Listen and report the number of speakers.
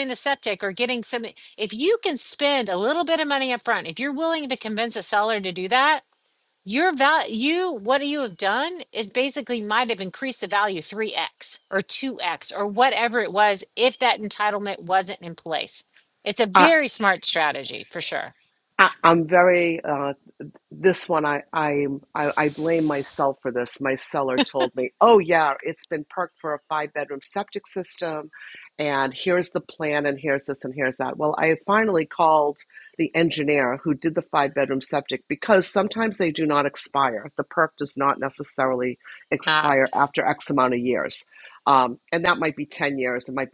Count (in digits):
2